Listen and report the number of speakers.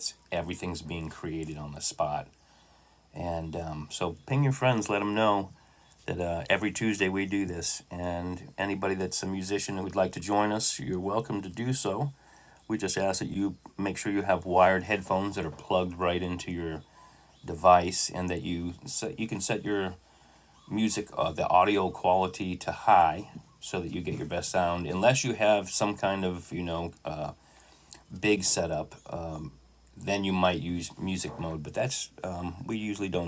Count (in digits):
1